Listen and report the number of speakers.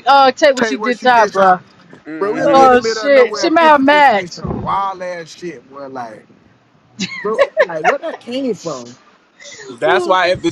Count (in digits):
3